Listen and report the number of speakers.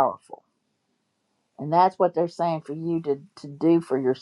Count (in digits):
1